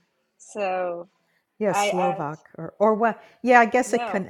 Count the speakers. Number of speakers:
two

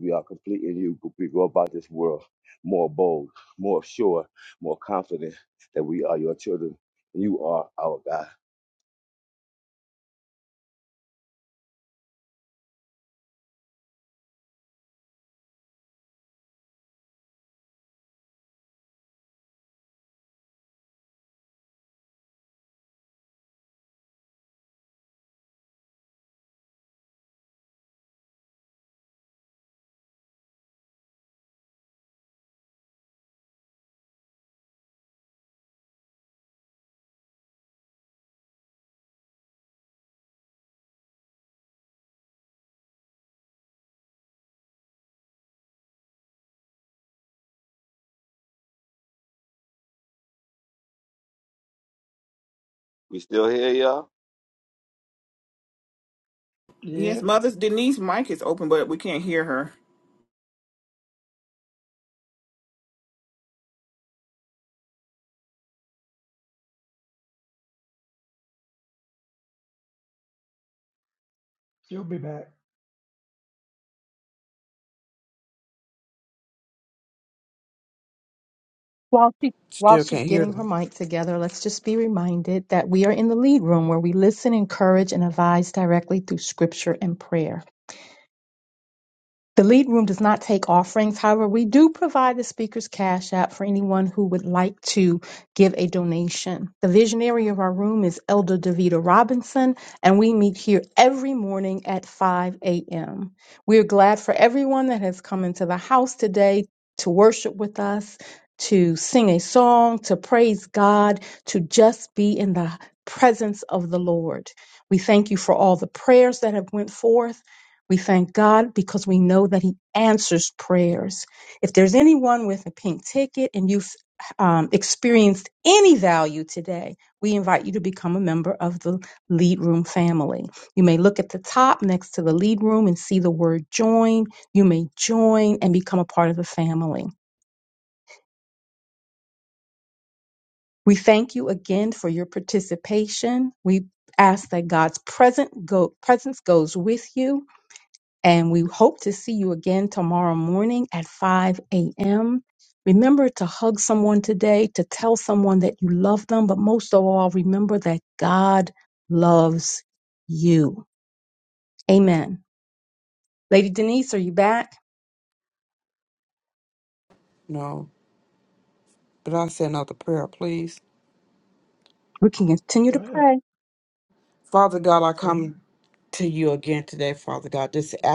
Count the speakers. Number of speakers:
five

